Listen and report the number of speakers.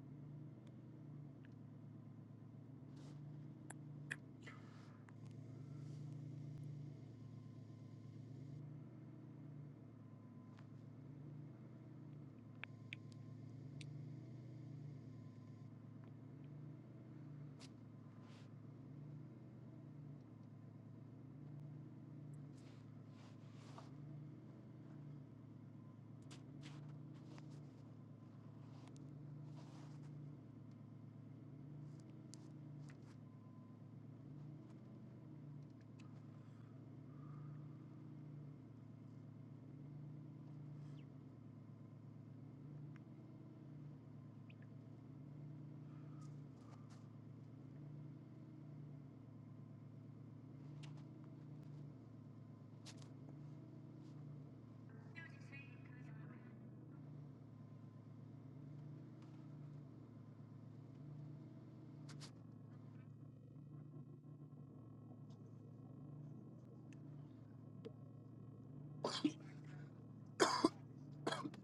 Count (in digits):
0